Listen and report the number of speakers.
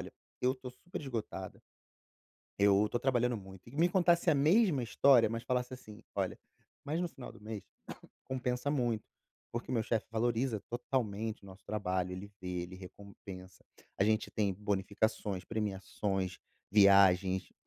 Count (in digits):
1